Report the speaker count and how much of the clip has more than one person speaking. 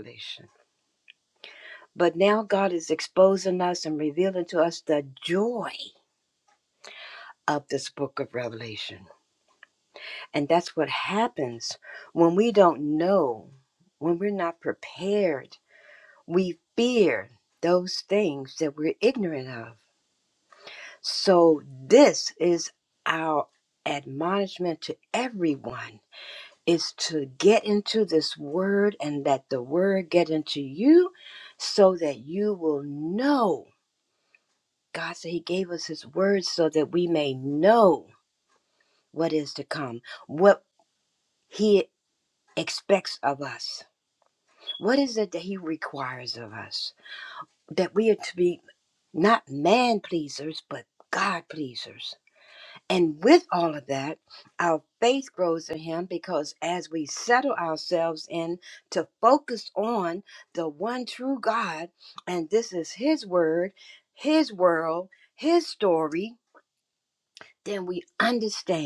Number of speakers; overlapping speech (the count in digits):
1, no overlap